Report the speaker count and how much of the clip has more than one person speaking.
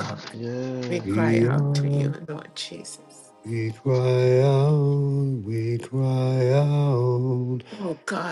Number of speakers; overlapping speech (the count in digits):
3, about 17%